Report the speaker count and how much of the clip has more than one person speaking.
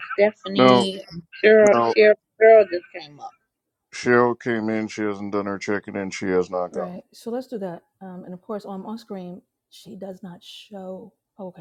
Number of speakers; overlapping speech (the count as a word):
three, about 7%